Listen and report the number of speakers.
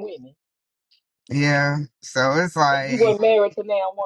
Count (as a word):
two